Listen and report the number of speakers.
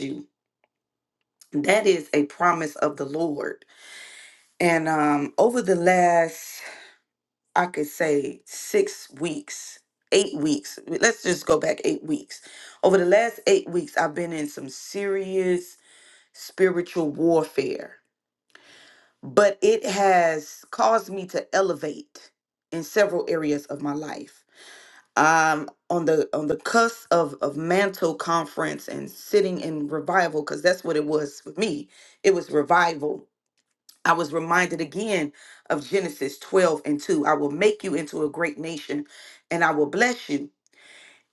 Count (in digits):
1